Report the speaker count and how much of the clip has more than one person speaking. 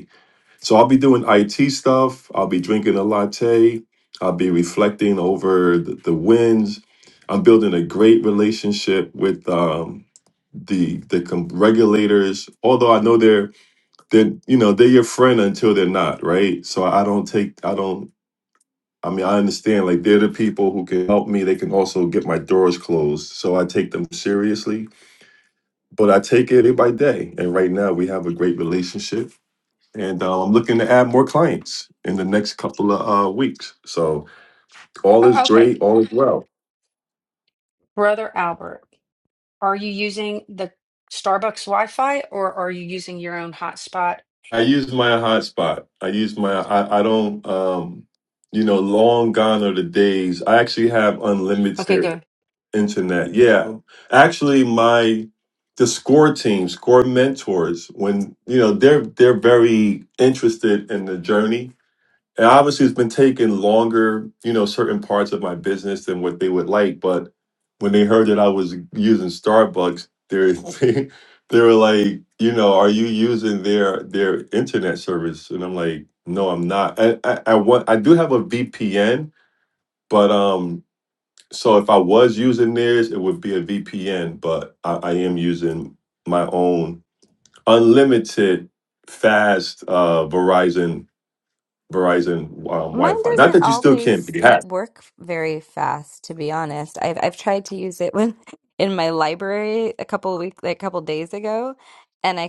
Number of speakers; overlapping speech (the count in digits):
3, about 2%